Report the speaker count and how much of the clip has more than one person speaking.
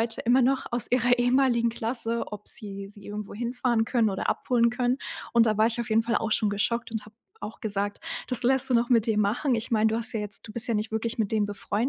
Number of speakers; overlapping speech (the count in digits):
1, no overlap